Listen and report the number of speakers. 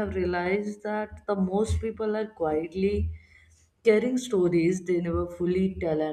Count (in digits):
1